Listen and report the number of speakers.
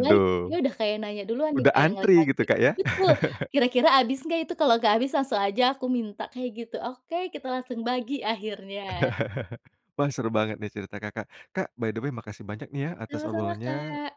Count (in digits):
2